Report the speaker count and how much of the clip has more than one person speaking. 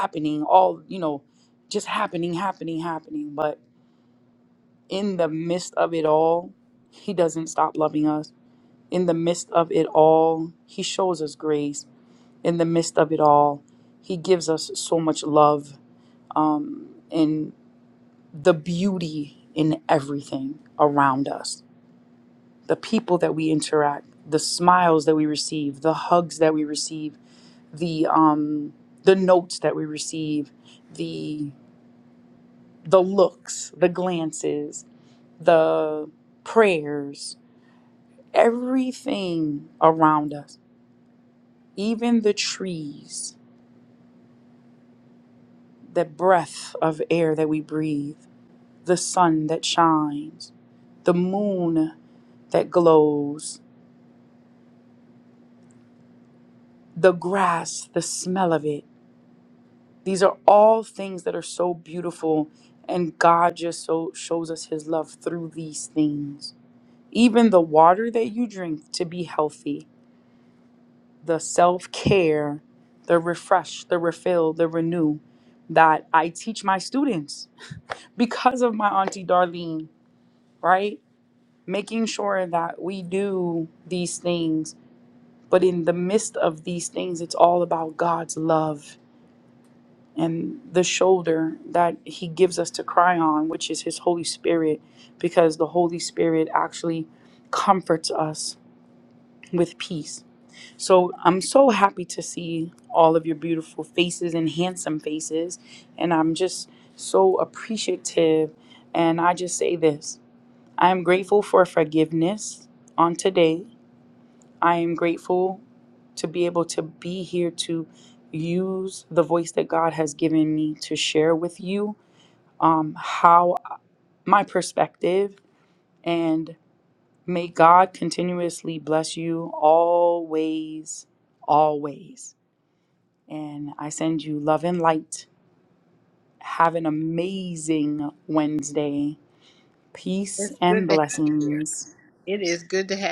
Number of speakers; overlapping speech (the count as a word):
two, about 1%